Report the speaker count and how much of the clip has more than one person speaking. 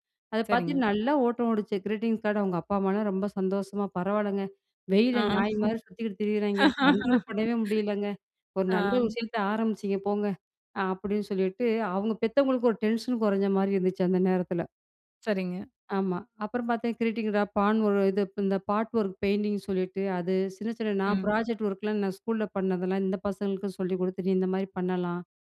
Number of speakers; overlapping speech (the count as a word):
two, about 3%